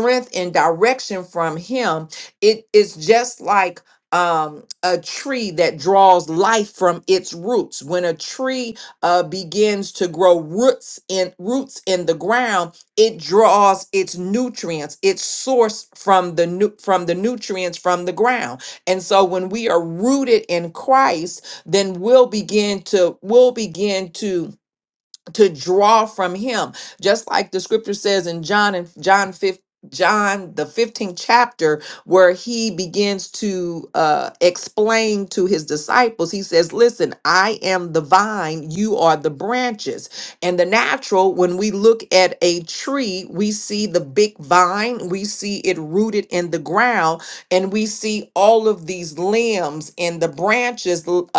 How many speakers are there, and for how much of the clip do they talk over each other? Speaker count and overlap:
one, no overlap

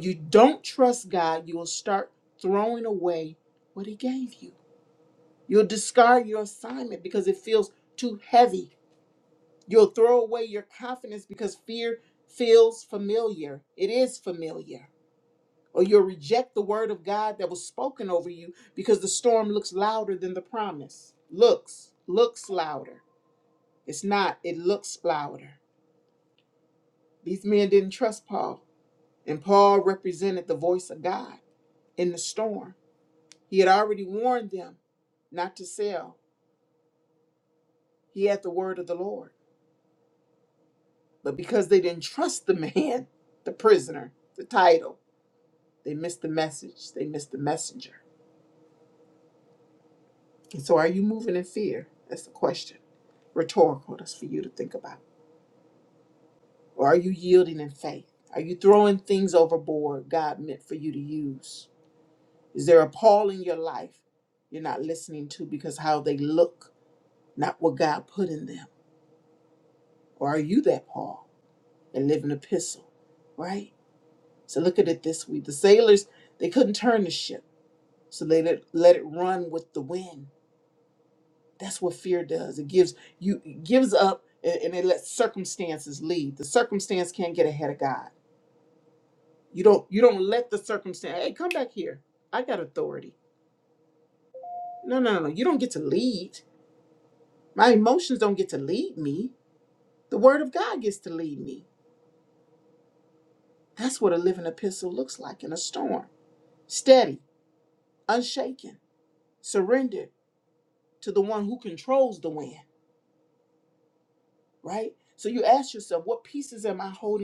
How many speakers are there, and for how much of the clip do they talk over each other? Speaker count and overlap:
one, no overlap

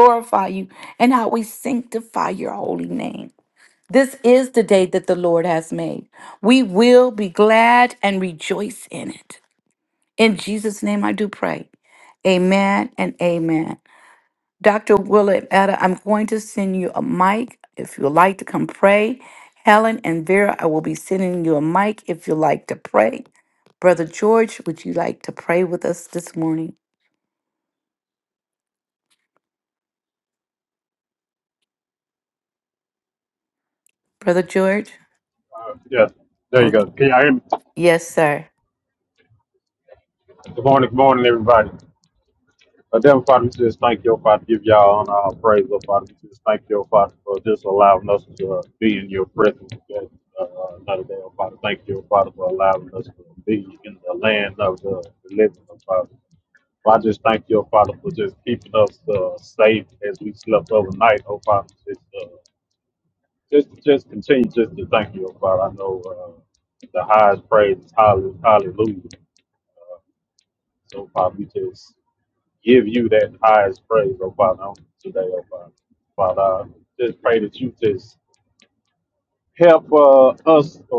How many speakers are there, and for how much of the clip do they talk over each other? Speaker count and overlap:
two, under 1%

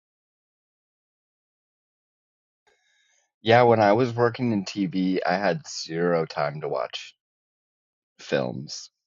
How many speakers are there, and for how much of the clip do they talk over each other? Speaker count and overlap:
one, no overlap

